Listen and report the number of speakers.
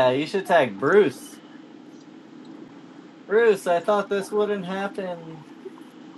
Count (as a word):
one